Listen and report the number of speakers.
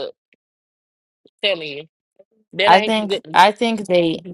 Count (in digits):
2